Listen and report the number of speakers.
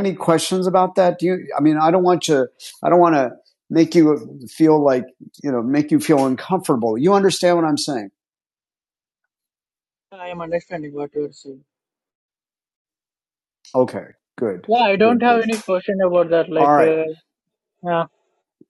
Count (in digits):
2